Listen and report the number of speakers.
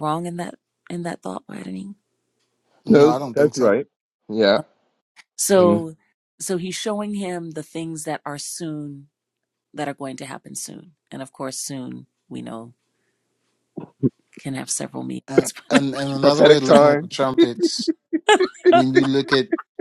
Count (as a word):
three